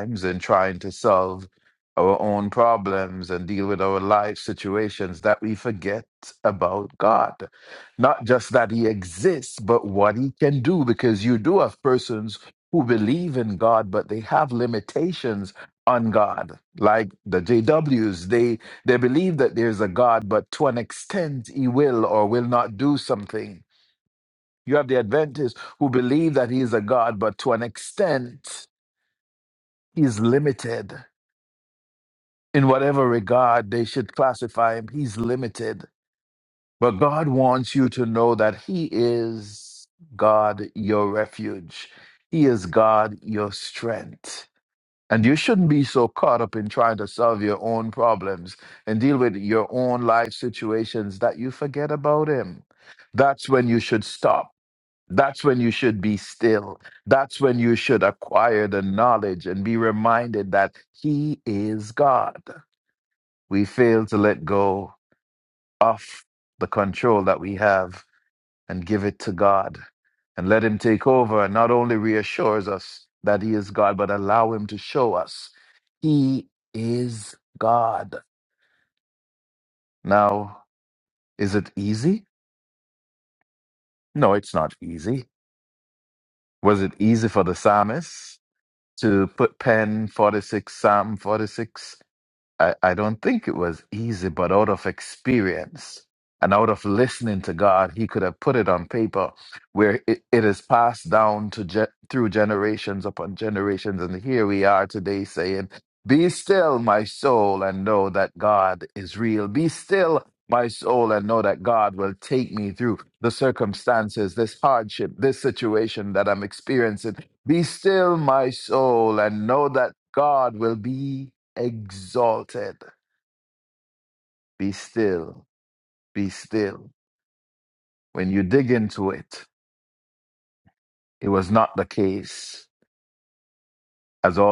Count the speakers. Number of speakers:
one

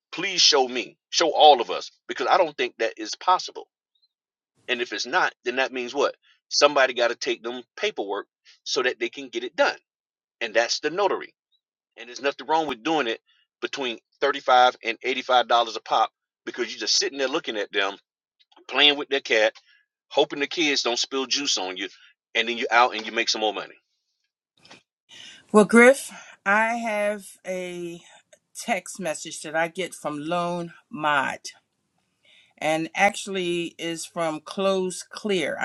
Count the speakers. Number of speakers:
two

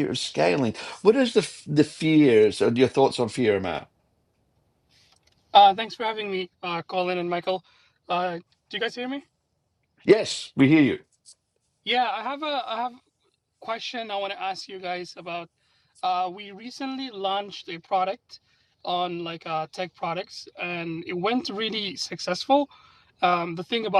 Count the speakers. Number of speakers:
two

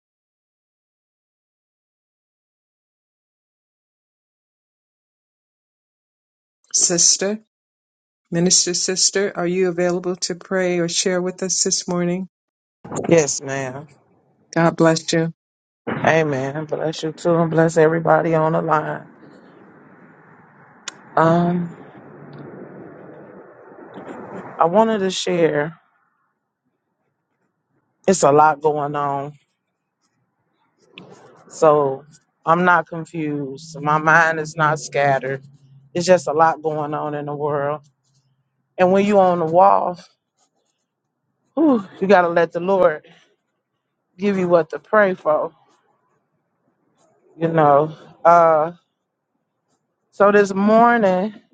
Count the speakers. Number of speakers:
two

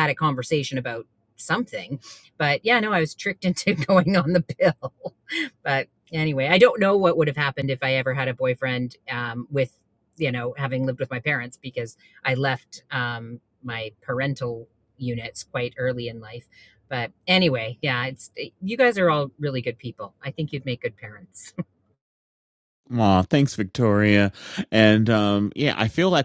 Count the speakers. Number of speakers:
two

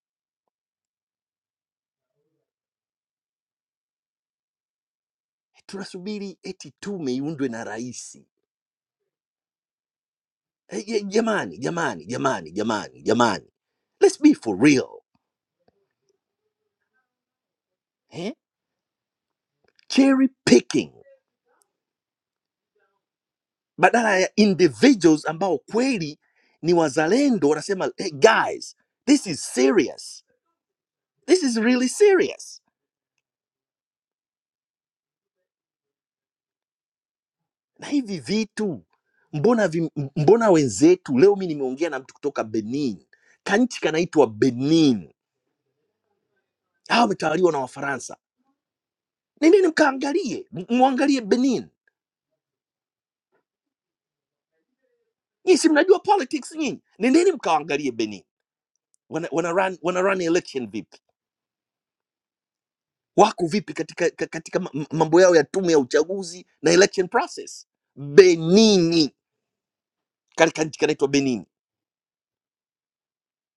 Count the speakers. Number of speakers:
one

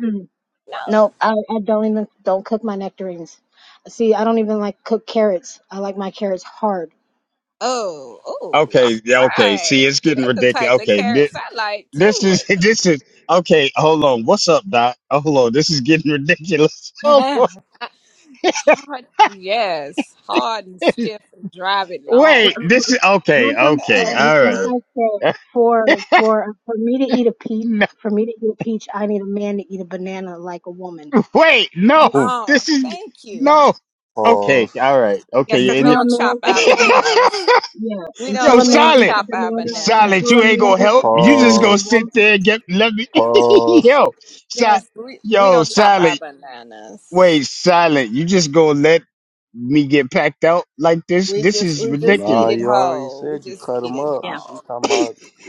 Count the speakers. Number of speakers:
four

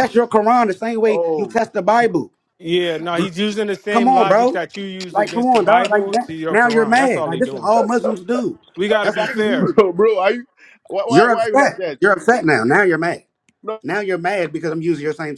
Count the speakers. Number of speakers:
three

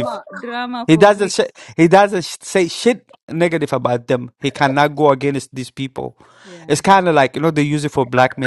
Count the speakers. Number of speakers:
two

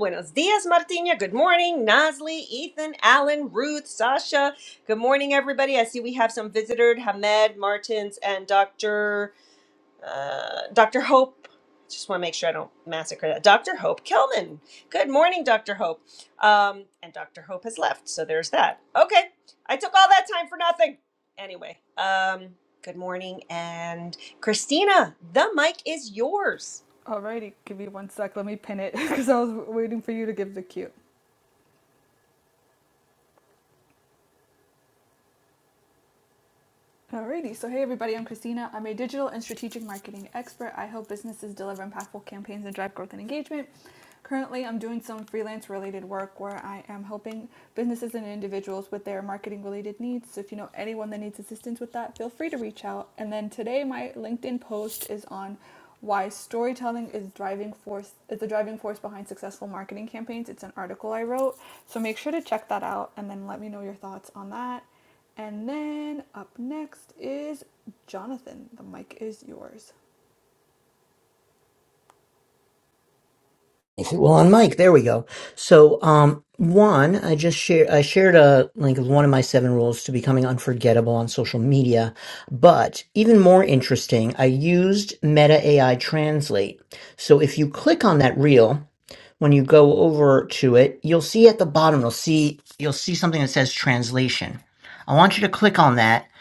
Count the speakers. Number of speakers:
three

